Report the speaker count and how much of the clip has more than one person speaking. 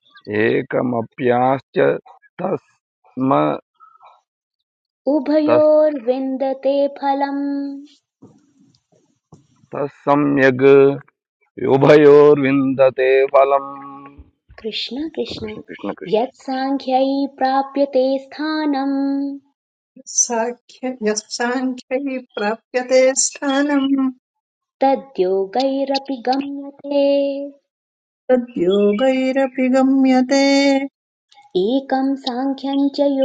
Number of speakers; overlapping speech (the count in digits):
3, about 1%